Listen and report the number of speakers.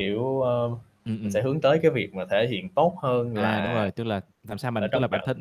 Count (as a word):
two